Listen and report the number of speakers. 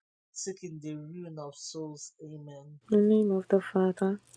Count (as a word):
two